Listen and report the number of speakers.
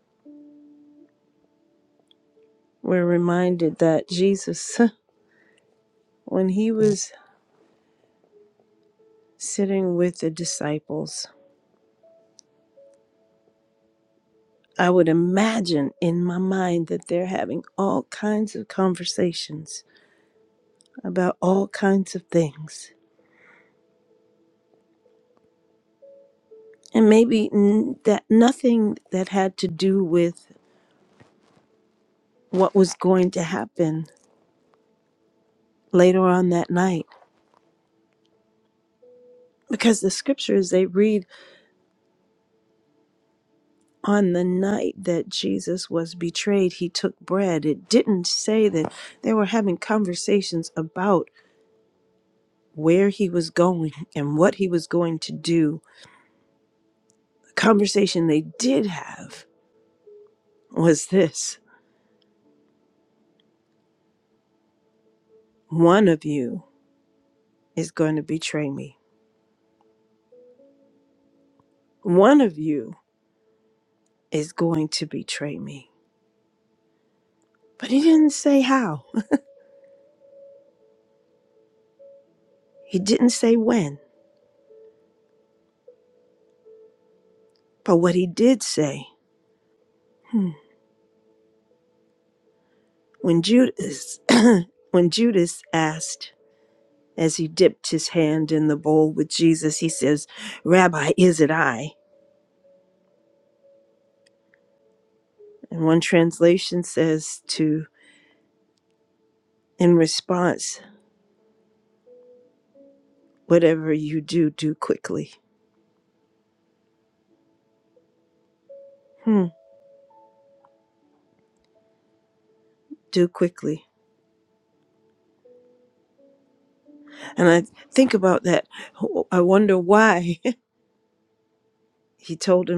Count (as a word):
one